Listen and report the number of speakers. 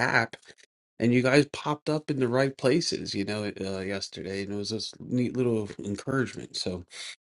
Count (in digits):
1